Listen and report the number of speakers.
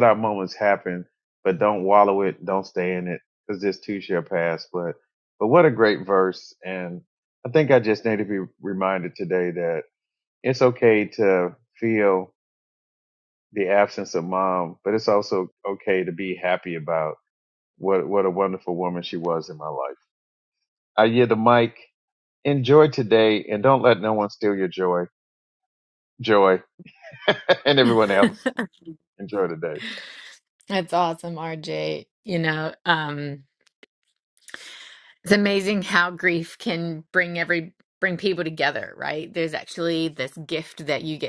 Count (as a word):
two